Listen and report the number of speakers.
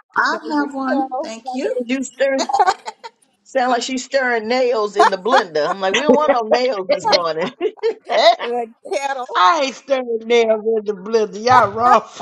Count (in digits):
4